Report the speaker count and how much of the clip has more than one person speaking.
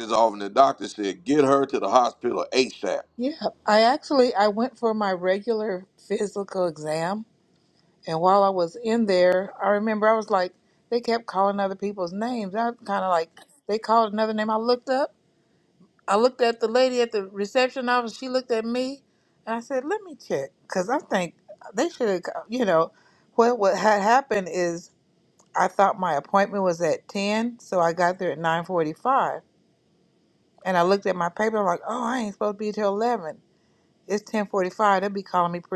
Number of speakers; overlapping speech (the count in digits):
2, no overlap